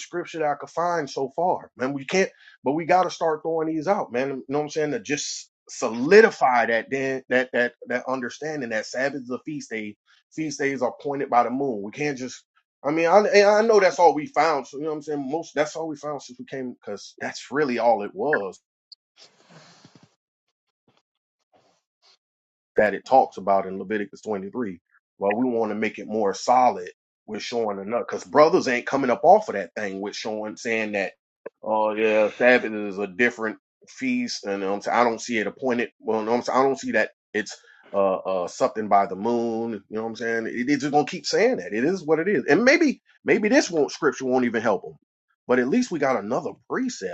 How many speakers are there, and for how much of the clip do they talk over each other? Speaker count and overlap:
one, no overlap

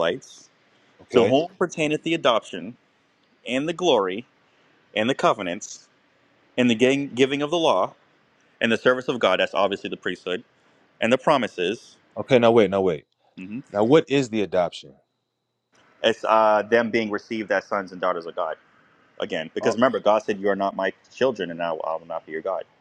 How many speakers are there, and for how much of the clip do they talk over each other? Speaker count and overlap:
two, about 1%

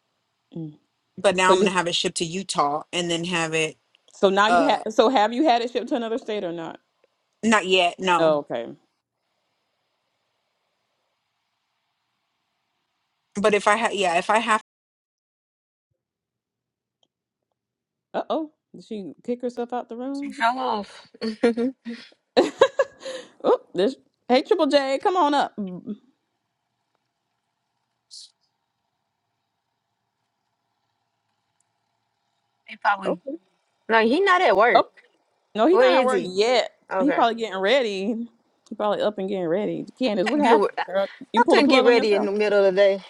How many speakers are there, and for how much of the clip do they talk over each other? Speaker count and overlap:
three, about 8%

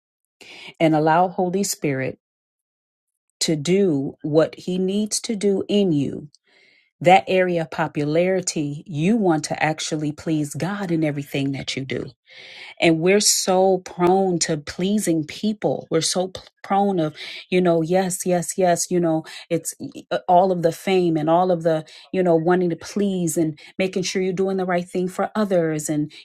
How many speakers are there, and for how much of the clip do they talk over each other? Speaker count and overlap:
one, no overlap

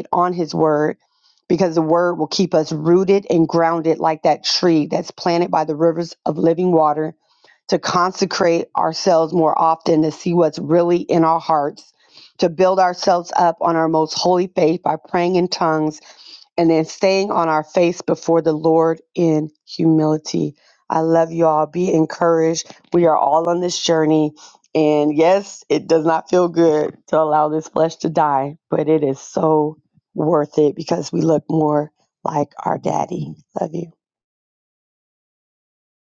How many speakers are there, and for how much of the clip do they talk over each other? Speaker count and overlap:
one, no overlap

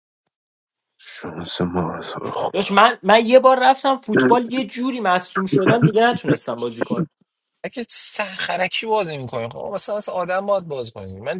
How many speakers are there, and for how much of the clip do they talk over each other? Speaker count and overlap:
three, no overlap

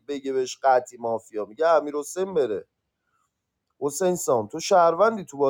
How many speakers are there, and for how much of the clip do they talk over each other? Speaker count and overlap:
one, no overlap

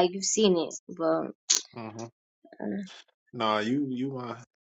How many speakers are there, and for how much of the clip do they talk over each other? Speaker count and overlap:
two, no overlap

